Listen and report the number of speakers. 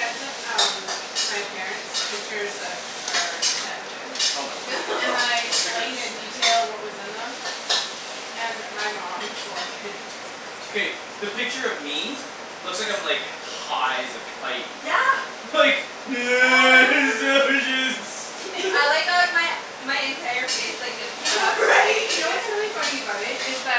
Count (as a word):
three